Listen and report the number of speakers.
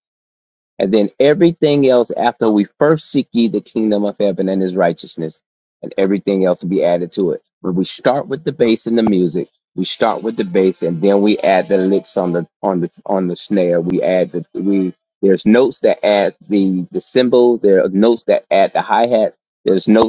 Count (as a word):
one